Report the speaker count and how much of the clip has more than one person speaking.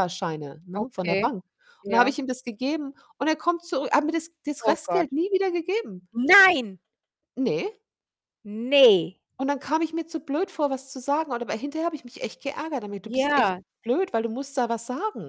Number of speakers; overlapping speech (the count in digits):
2, about 11%